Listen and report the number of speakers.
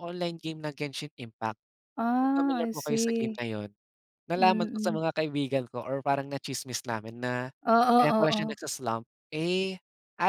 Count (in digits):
2